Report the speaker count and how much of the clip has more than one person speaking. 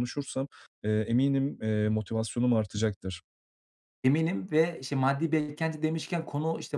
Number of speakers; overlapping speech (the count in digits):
2, no overlap